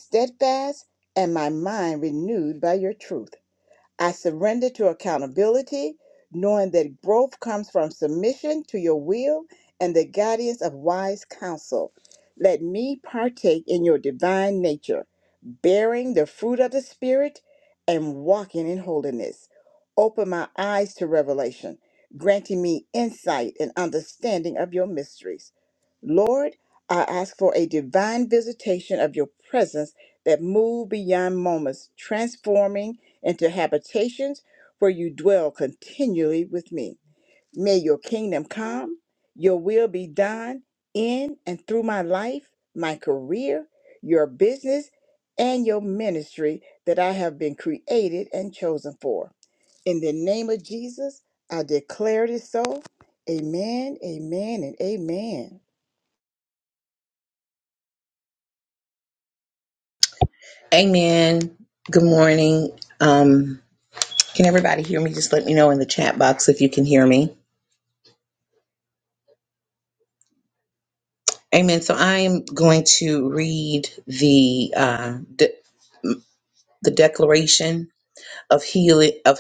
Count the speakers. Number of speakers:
two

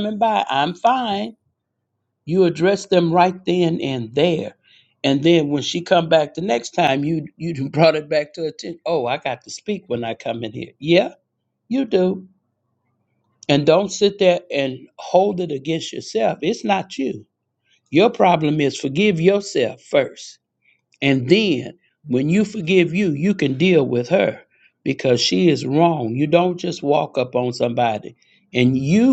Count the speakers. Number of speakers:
one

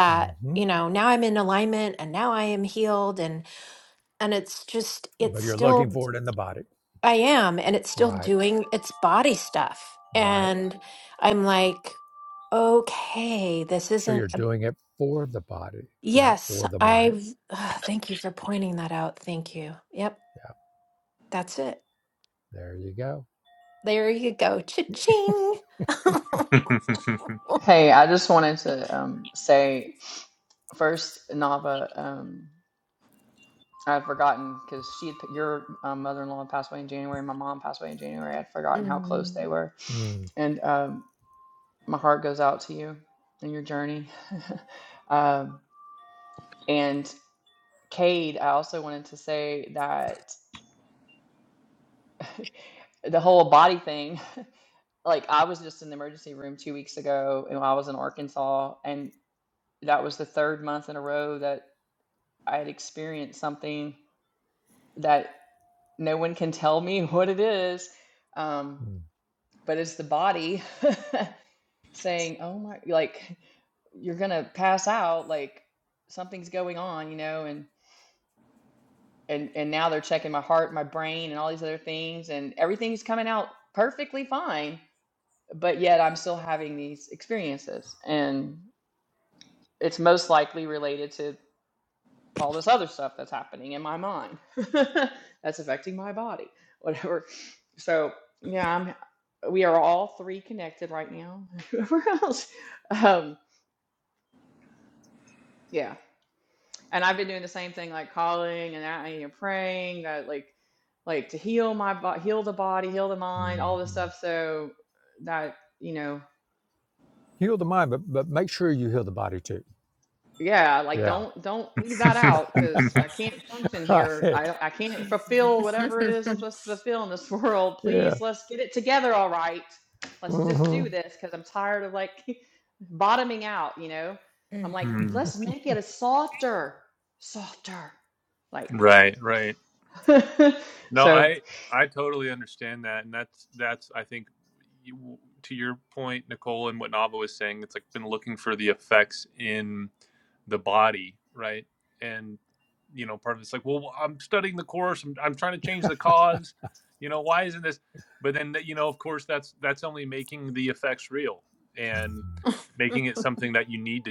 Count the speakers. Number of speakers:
four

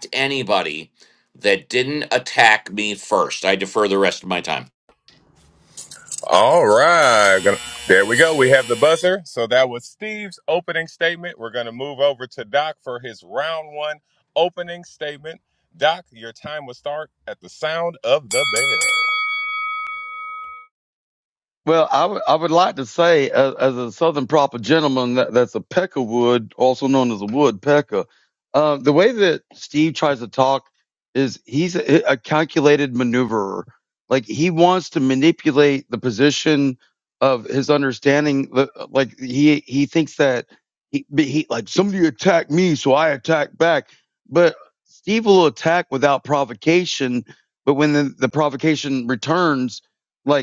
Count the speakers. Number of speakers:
three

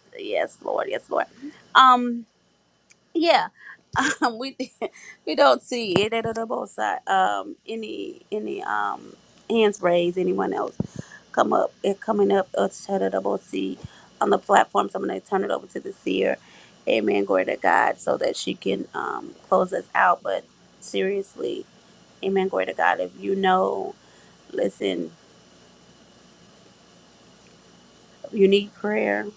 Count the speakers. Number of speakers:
one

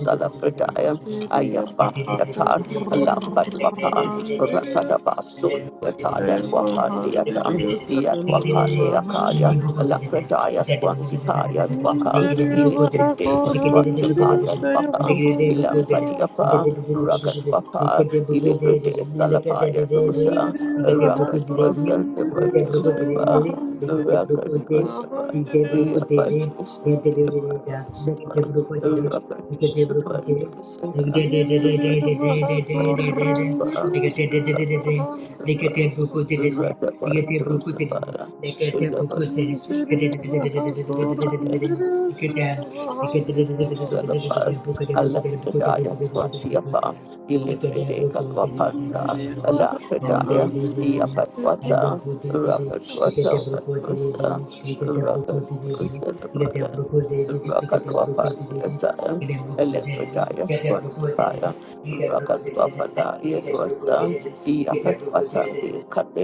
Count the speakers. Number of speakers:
three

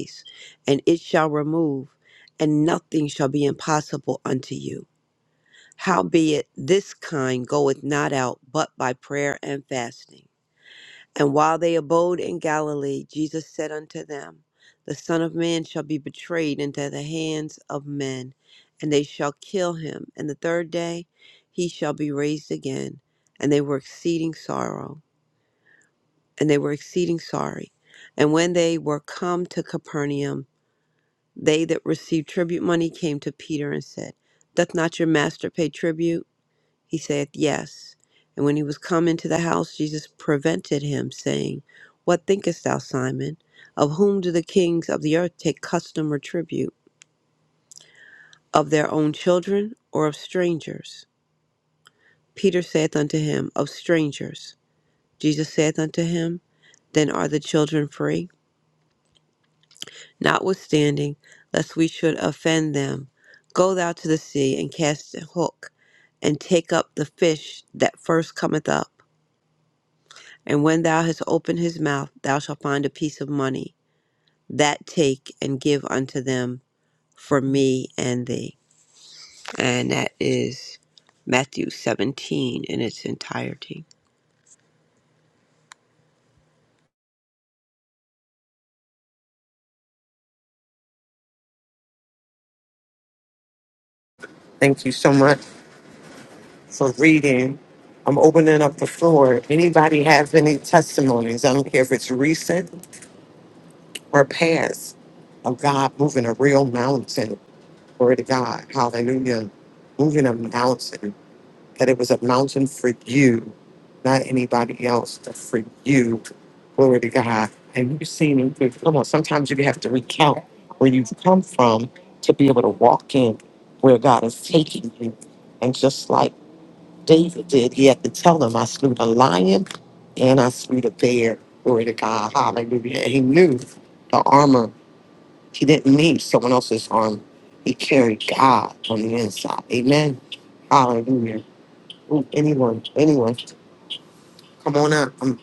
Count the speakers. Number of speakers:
two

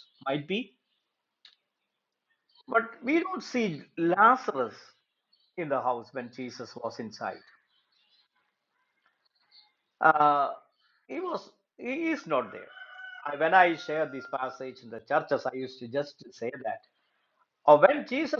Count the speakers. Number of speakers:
one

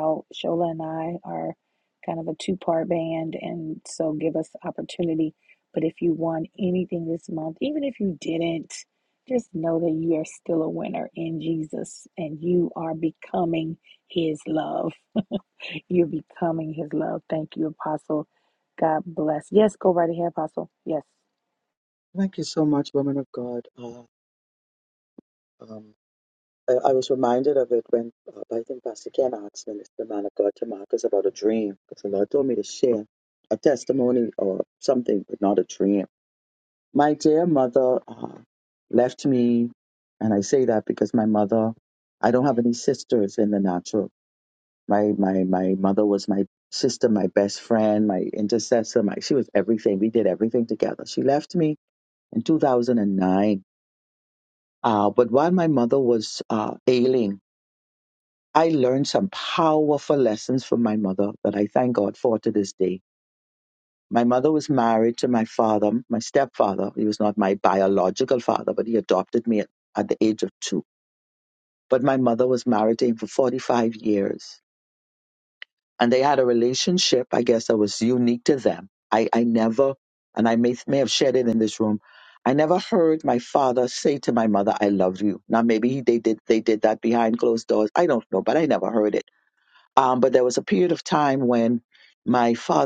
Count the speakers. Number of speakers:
two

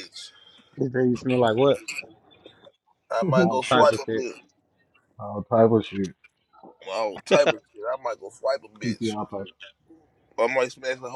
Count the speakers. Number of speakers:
three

